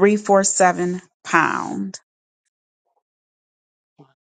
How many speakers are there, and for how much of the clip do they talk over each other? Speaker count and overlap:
one, no overlap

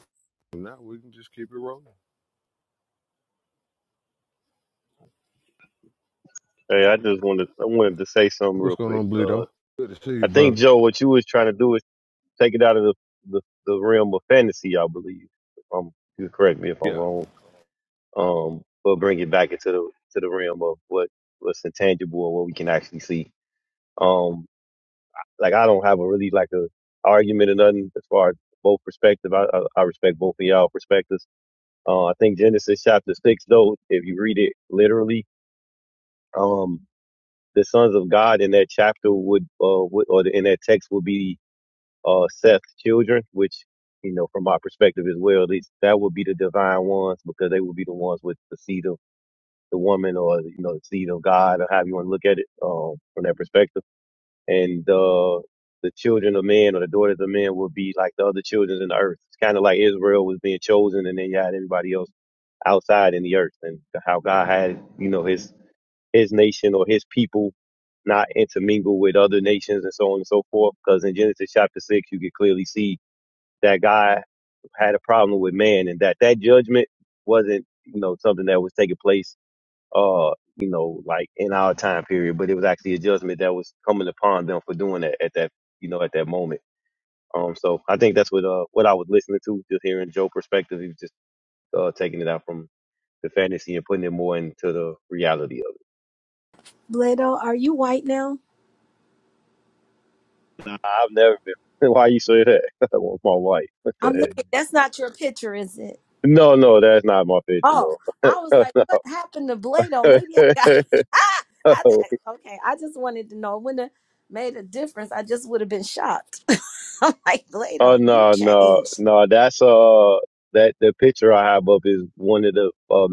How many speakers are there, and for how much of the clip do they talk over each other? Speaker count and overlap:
three, about 2%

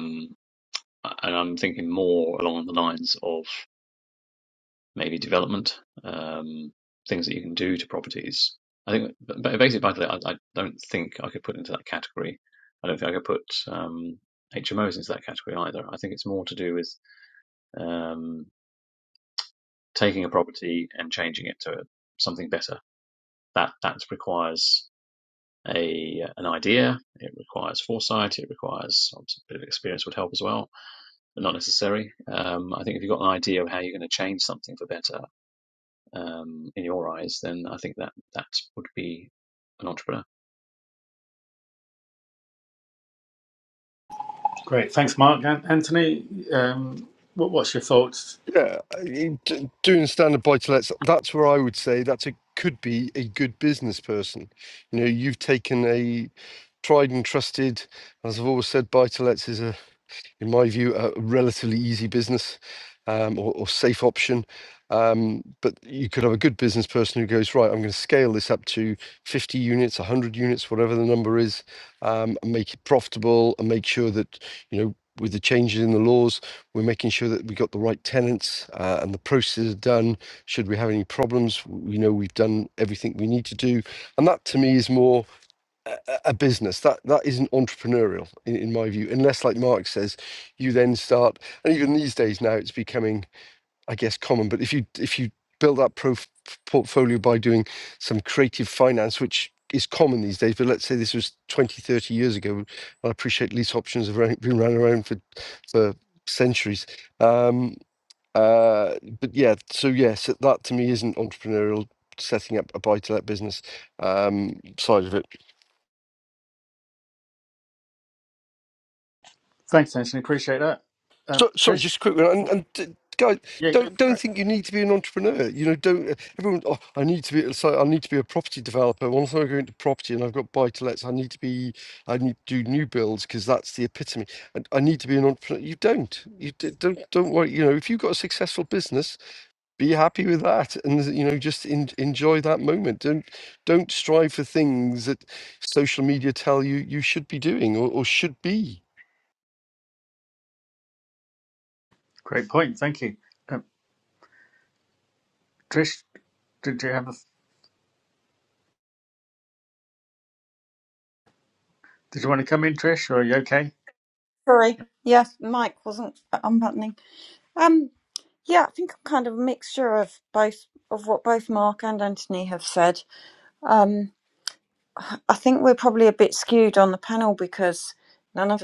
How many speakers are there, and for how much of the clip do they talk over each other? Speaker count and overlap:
four, about 1%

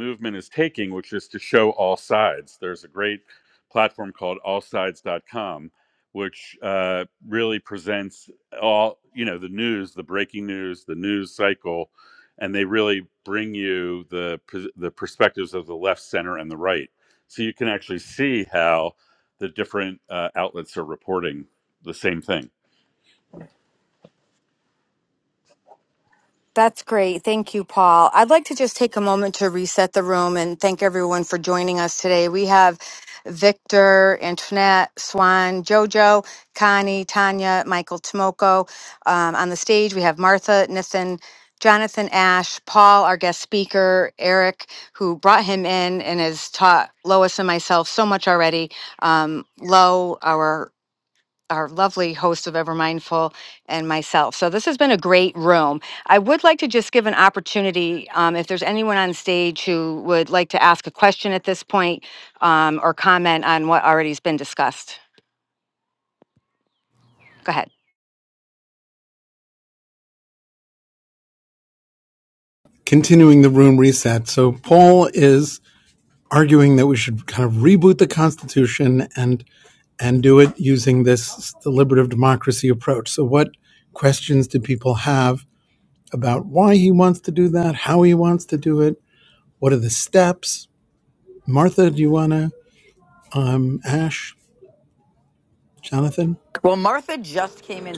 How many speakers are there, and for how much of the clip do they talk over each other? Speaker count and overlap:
four, no overlap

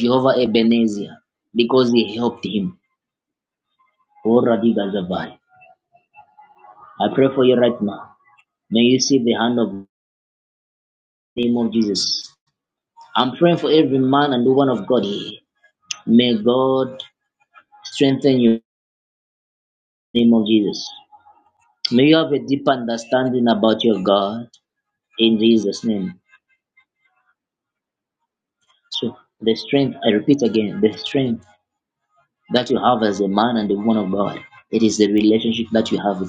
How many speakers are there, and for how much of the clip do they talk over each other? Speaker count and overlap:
one, no overlap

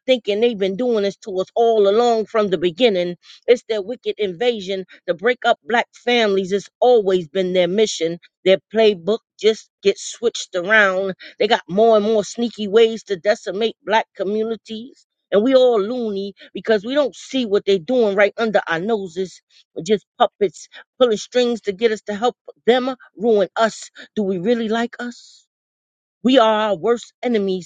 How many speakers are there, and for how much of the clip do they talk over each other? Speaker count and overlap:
one, no overlap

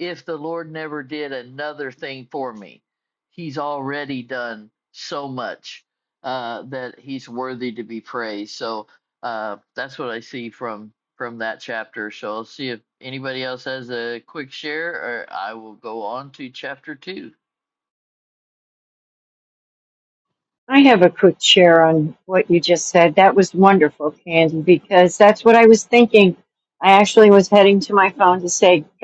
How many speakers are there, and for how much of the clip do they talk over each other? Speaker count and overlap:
two, no overlap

